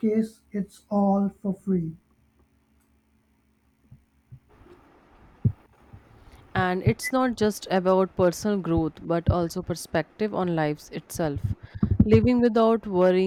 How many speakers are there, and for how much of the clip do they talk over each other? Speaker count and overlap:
2, no overlap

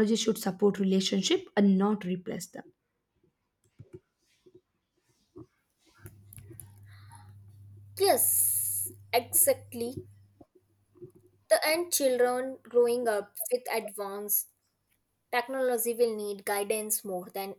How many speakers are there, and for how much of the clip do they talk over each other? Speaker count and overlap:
2, no overlap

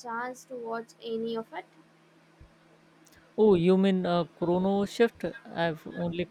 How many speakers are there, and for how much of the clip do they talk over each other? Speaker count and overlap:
2, no overlap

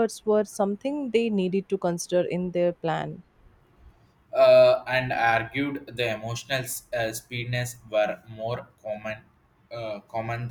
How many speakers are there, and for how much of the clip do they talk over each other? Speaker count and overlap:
2, no overlap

